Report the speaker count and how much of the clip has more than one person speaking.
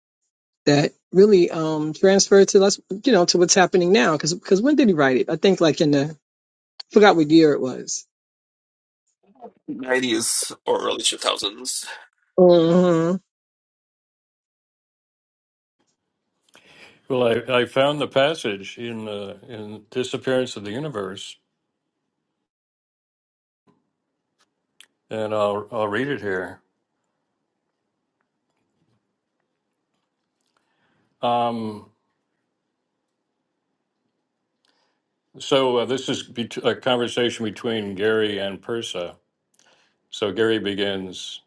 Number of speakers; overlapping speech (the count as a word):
three, no overlap